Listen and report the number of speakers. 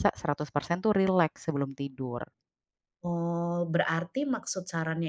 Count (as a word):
two